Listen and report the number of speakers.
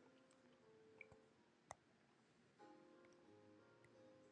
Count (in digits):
0